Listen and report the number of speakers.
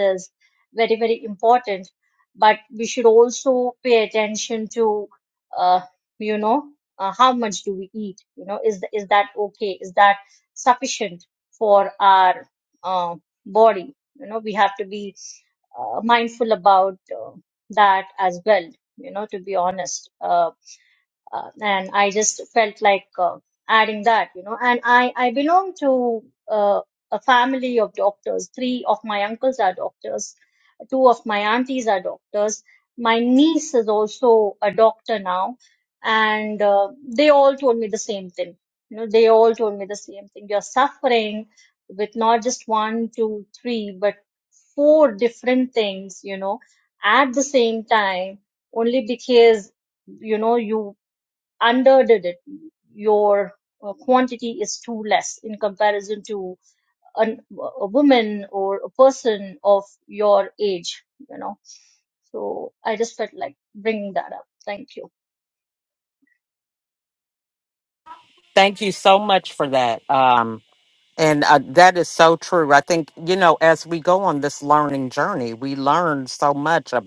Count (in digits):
2